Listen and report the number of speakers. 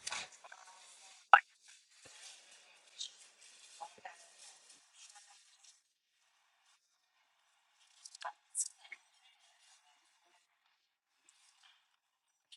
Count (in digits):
0